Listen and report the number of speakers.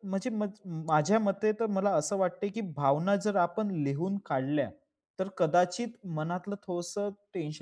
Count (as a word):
one